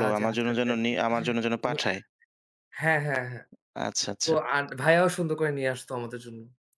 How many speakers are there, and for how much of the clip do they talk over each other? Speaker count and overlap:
2, about 19%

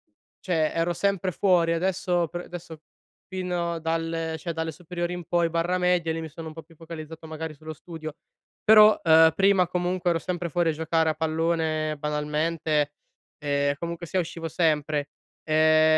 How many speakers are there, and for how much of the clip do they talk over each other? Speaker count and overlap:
1, no overlap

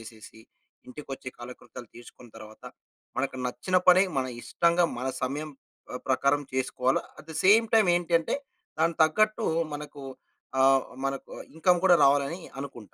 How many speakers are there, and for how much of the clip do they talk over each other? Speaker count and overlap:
1, no overlap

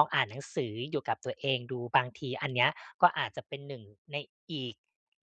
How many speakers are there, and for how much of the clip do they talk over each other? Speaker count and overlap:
1, no overlap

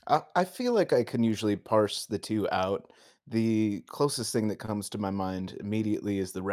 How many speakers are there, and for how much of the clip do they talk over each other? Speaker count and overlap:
1, no overlap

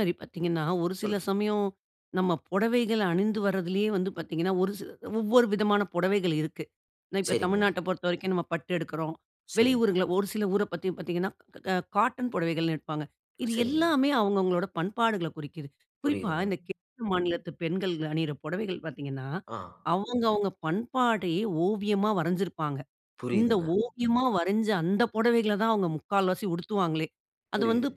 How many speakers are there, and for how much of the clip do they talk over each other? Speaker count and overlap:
2, about 8%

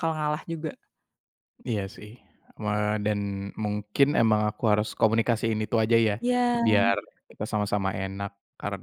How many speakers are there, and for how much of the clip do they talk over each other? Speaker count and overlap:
2, under 1%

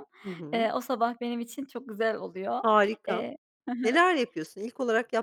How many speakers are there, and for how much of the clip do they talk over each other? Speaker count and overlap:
2, about 10%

